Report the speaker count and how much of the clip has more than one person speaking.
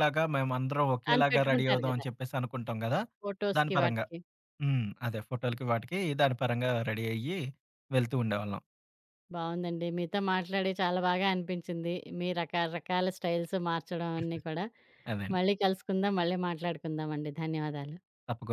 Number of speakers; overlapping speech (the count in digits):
2, about 8%